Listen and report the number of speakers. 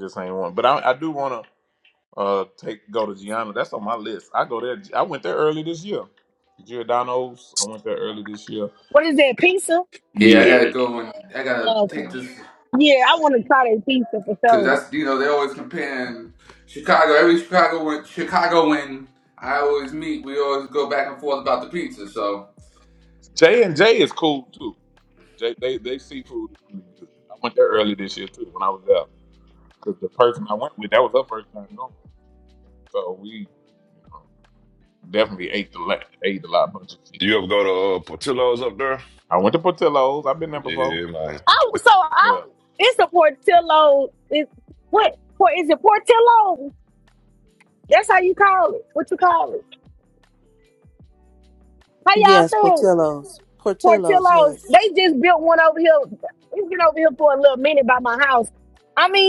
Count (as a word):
five